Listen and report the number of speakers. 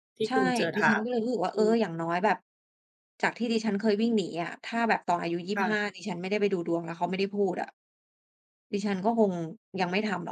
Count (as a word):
two